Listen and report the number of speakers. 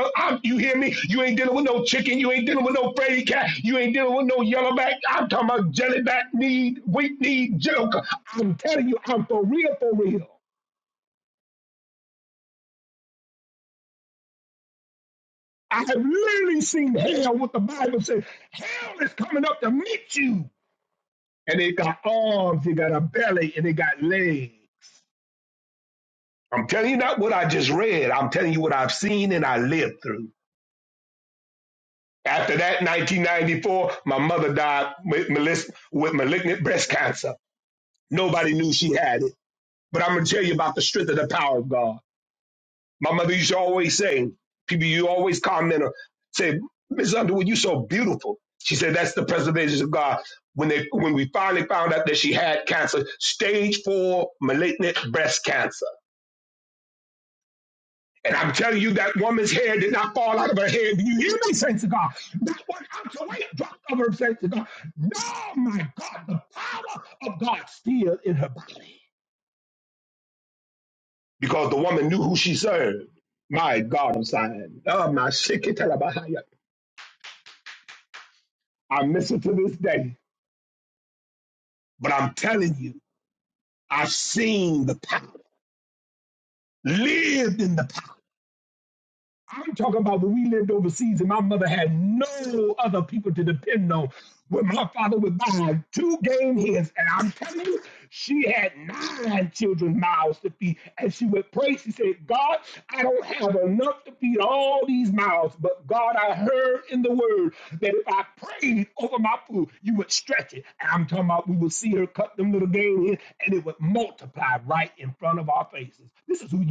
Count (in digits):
1